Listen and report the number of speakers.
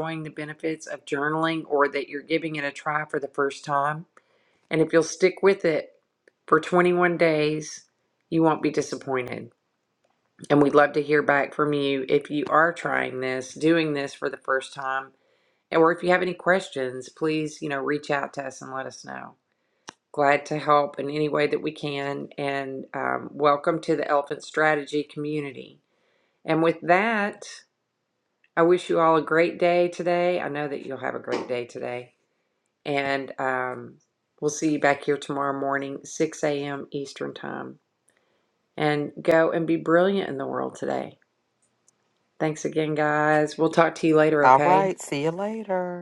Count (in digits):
2